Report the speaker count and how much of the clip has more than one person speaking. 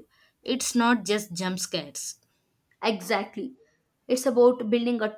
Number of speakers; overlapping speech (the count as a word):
two, no overlap